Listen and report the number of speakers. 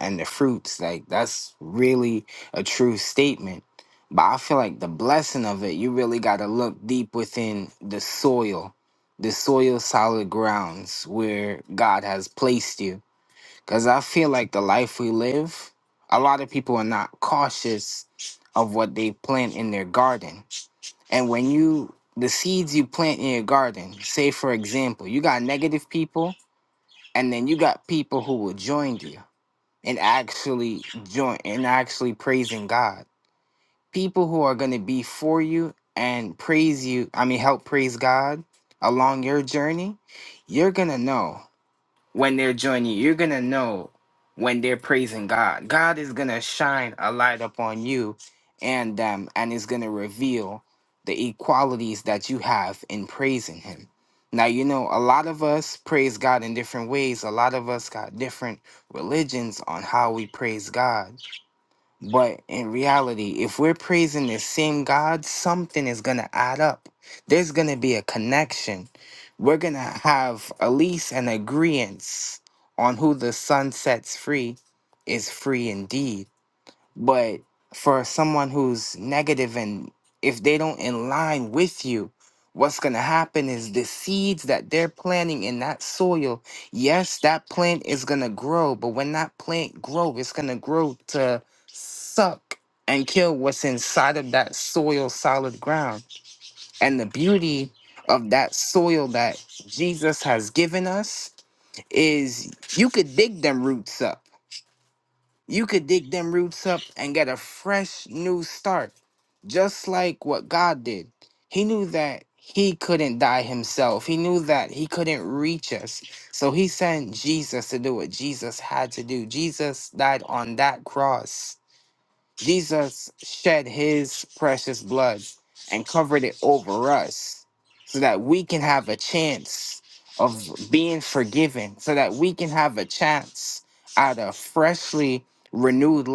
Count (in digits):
1